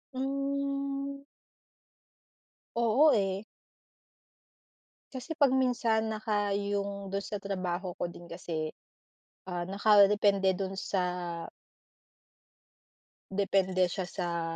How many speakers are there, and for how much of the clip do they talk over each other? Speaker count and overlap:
one, no overlap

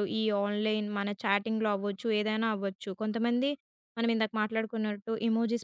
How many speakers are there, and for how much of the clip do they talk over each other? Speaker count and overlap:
one, no overlap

